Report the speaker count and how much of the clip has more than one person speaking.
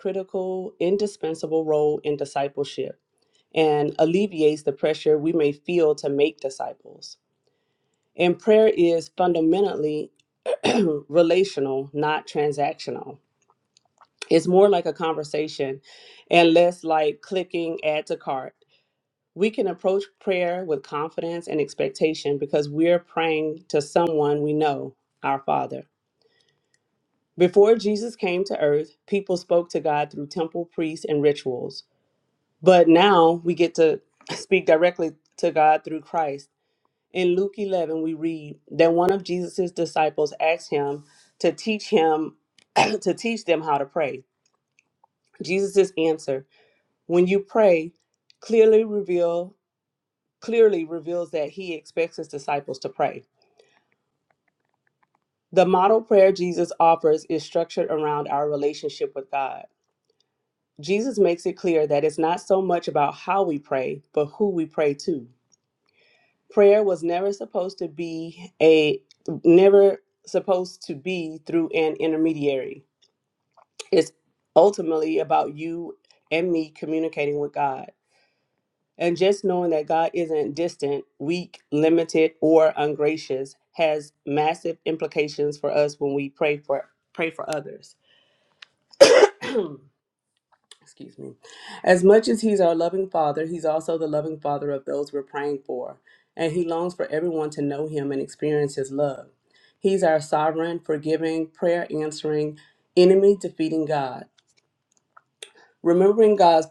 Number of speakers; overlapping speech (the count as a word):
one, no overlap